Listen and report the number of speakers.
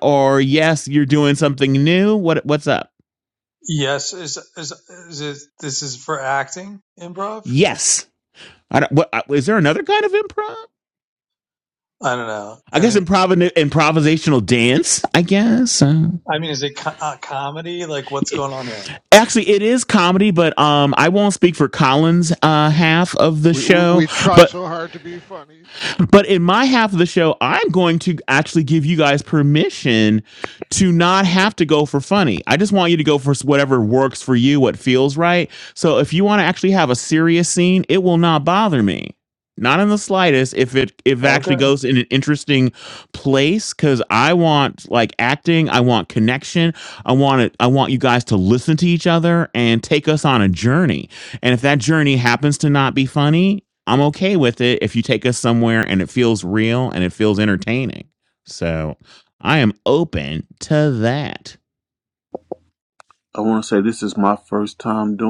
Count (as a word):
four